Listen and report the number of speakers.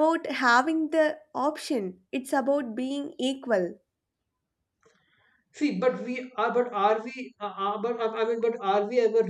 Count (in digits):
2